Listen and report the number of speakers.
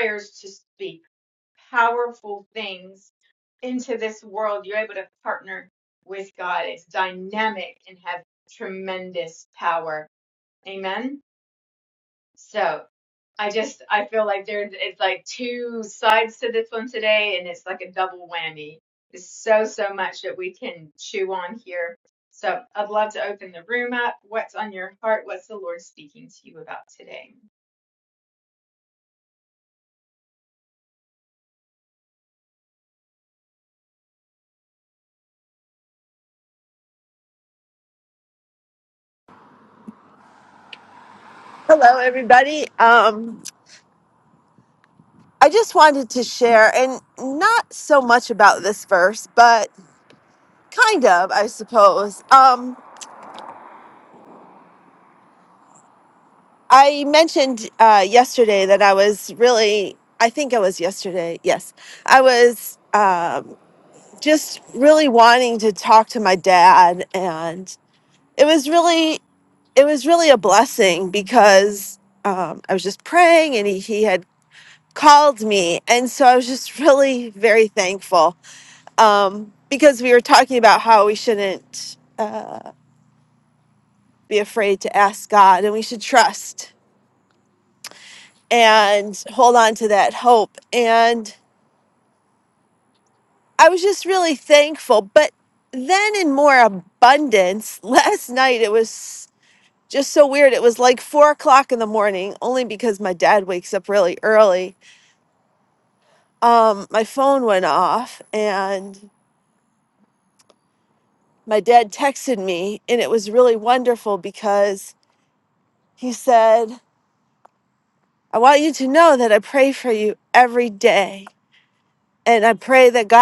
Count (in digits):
2